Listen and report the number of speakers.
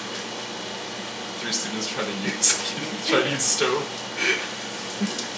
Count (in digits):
1